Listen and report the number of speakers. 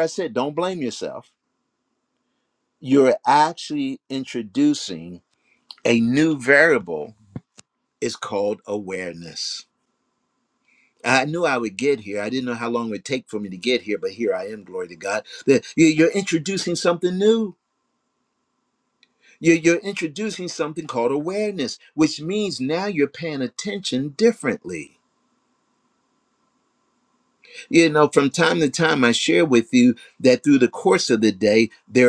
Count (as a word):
one